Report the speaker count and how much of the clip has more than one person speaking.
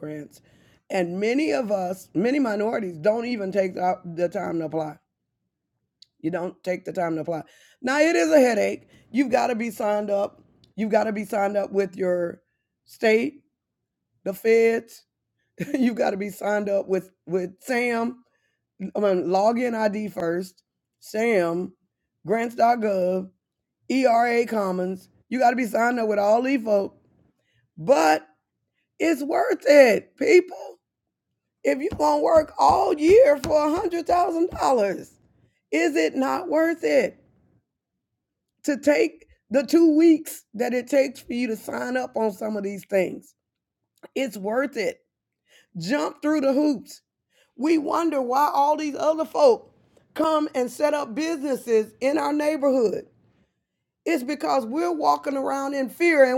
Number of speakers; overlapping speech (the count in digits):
1, no overlap